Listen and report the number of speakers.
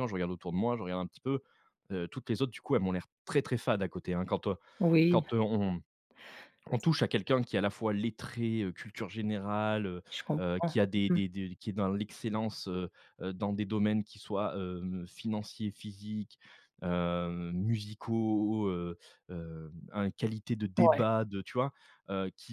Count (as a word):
two